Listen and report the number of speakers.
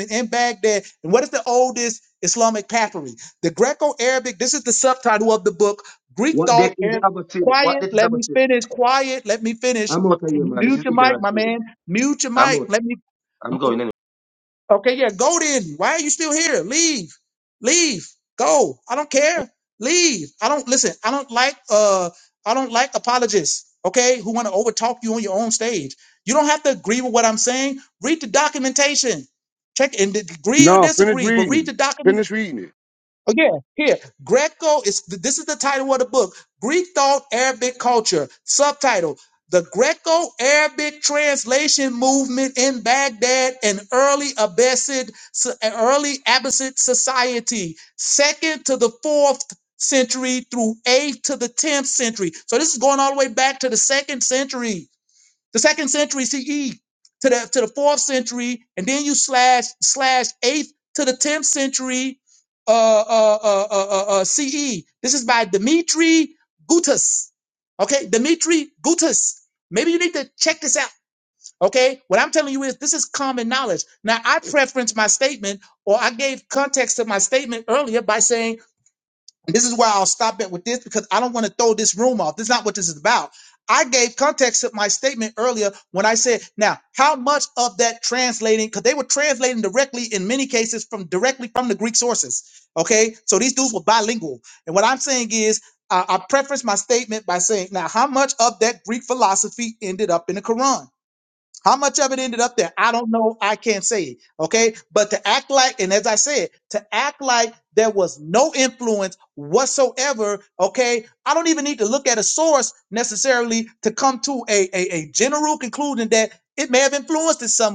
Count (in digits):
3